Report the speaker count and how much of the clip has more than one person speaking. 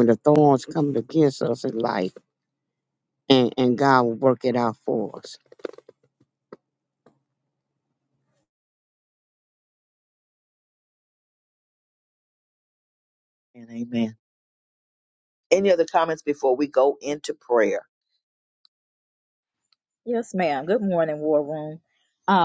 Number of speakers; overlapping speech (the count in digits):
3, no overlap